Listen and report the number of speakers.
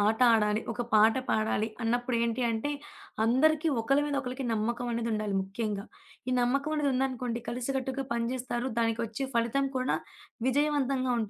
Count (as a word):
one